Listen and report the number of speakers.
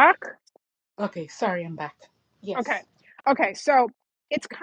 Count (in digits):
2